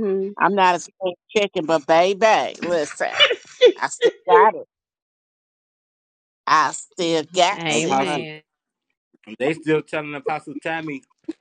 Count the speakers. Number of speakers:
three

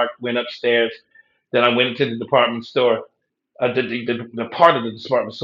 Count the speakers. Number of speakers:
one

